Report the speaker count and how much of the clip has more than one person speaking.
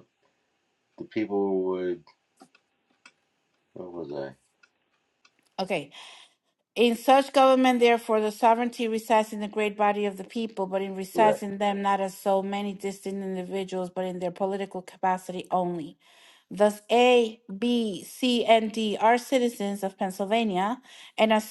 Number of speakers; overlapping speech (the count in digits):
2, about 1%